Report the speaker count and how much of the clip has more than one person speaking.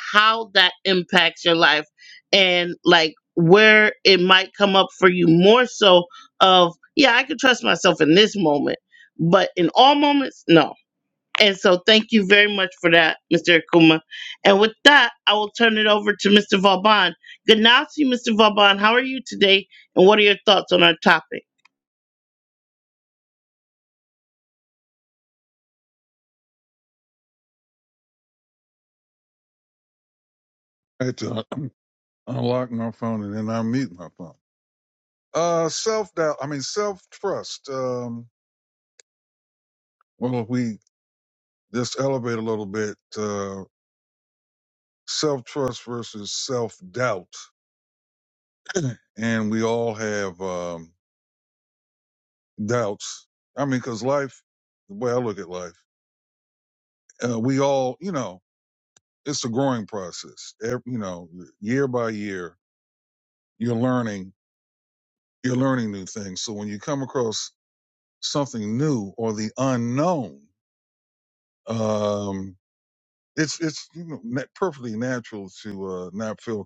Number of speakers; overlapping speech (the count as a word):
two, no overlap